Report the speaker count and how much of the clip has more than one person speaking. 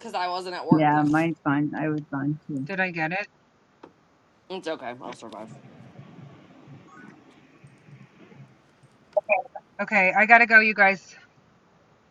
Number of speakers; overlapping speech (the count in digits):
3, about 3%